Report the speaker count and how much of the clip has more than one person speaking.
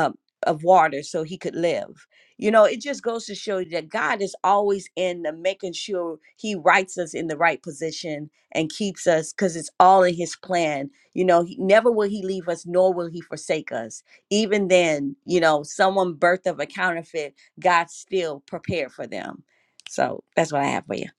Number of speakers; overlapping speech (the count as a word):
one, no overlap